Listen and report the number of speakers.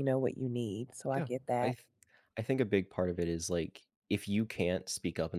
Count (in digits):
2